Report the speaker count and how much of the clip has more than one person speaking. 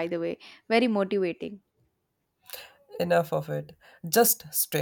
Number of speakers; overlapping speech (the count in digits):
2, no overlap